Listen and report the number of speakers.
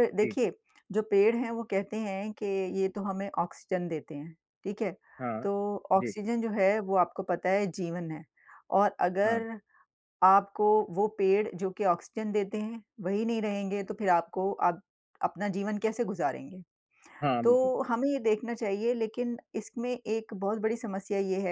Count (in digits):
2